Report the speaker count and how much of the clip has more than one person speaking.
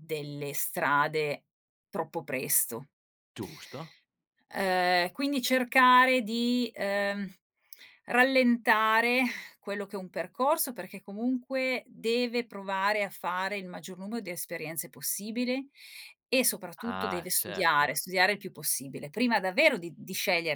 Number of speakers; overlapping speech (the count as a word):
two, about 5%